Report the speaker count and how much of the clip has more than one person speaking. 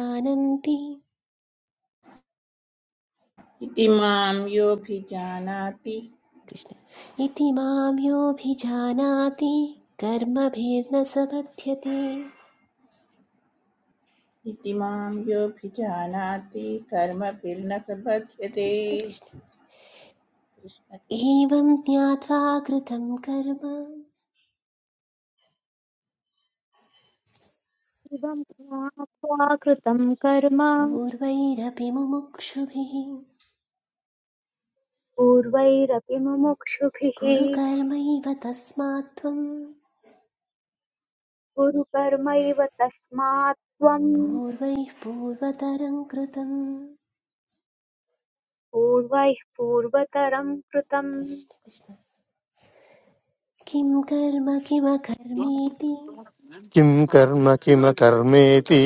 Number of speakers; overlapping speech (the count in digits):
4, about 1%